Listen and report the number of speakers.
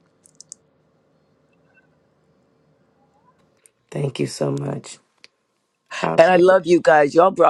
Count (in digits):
2